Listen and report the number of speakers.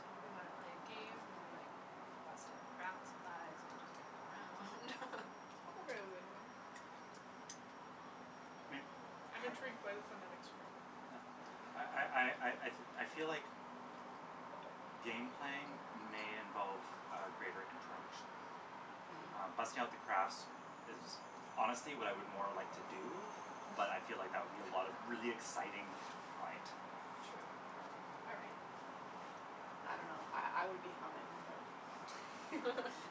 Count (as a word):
four